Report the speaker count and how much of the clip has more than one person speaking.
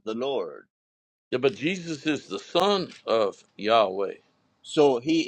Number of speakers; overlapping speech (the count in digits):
2, no overlap